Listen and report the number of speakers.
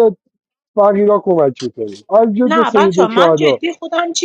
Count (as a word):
two